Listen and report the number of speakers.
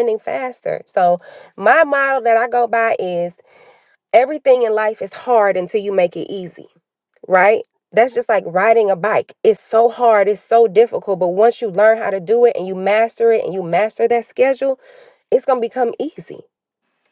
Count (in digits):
1